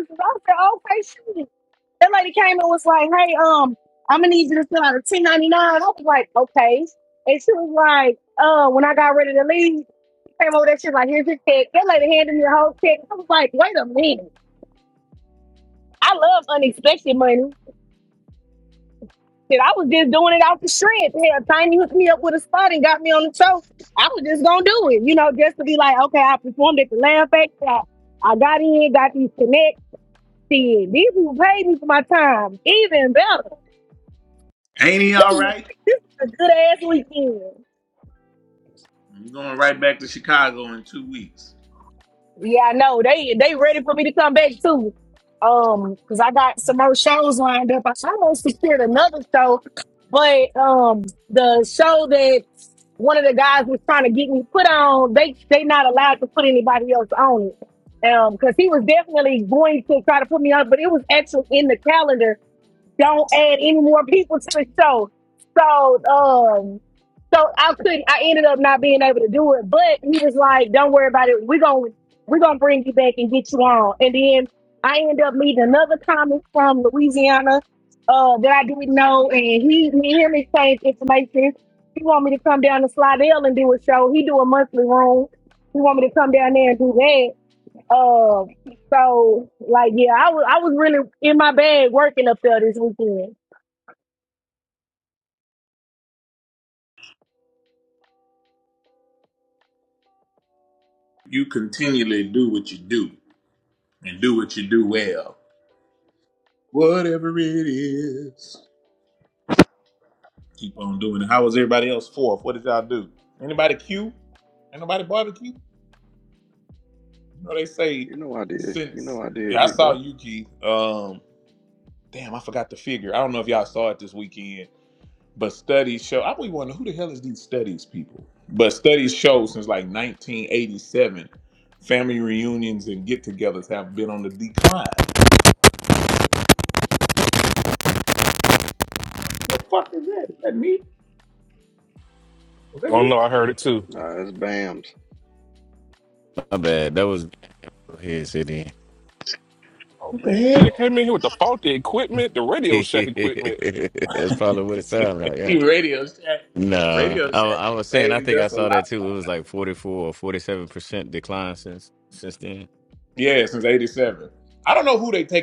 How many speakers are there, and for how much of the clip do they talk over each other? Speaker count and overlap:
five, about 3%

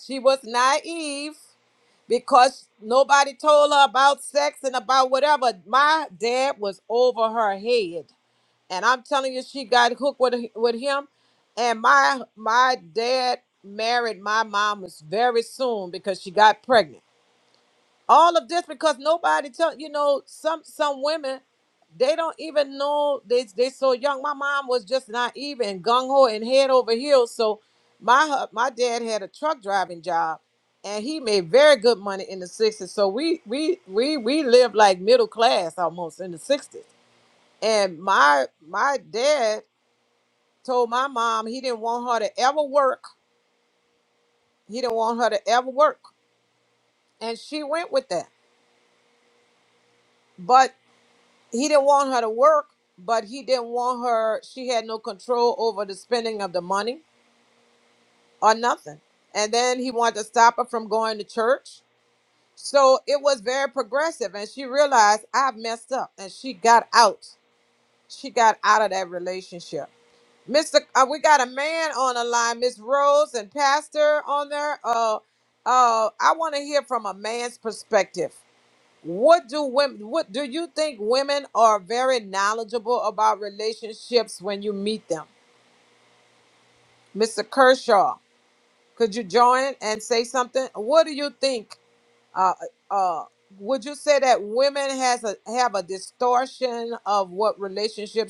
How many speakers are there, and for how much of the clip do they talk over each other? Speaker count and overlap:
one, no overlap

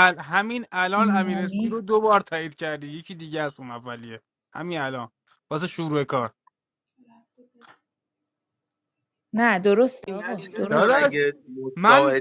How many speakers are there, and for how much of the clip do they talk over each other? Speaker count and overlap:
three, about 18%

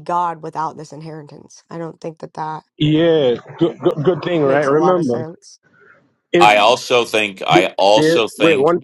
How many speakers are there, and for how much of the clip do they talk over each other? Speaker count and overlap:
three, about 25%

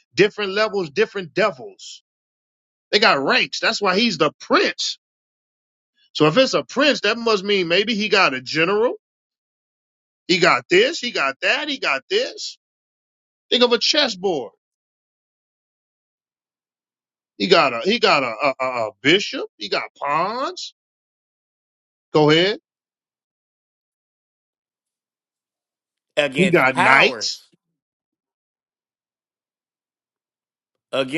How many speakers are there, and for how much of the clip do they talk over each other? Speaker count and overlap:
two, about 3%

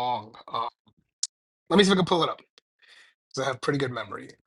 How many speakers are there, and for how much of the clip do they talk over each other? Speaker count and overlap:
one, no overlap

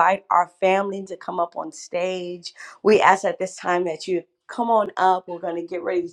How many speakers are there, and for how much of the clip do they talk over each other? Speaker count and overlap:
one, no overlap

